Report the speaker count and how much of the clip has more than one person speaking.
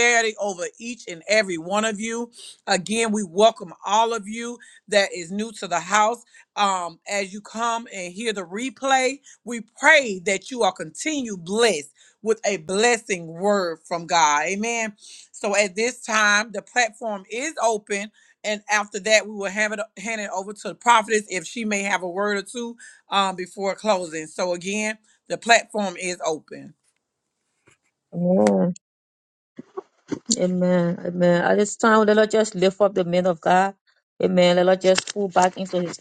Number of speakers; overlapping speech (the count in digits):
2, no overlap